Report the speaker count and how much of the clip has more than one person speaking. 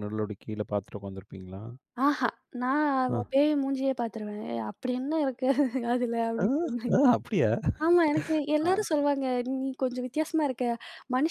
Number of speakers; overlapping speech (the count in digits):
2, about 4%